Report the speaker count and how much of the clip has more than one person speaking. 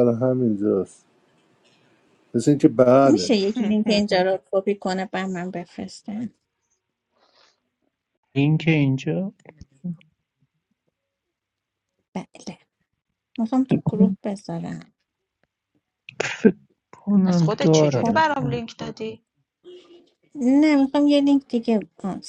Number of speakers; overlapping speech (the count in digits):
4, about 7%